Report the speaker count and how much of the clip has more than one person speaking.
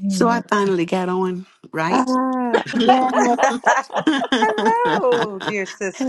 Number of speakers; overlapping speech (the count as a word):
three, about 11%